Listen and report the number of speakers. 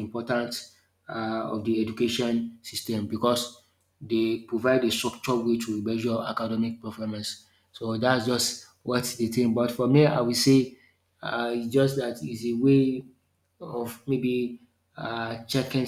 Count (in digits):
1